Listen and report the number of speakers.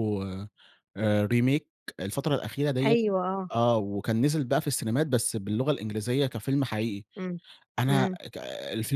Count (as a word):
two